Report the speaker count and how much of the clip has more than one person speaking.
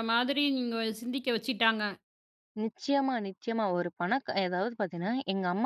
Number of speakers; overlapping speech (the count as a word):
two, no overlap